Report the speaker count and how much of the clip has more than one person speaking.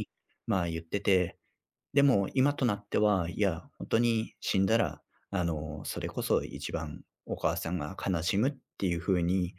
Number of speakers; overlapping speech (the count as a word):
one, no overlap